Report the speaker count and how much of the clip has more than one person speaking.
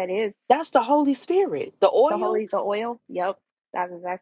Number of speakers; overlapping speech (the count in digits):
2, about 8%